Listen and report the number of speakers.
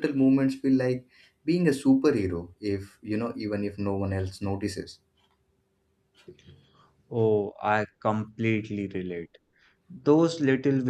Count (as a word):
two